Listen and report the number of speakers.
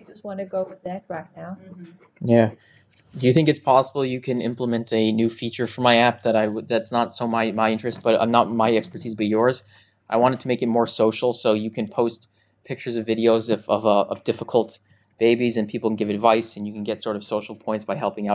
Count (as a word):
two